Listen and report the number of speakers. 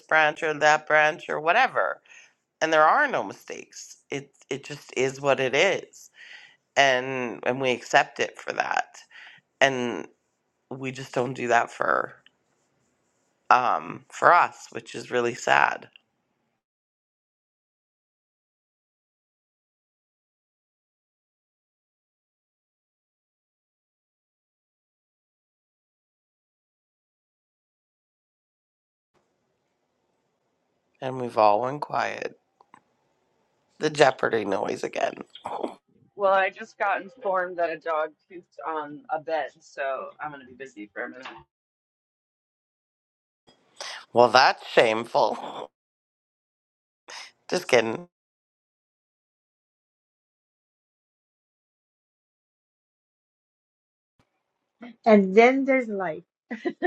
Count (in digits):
3